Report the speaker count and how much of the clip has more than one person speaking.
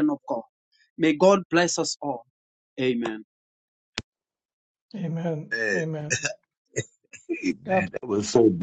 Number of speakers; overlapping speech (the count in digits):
3, about 6%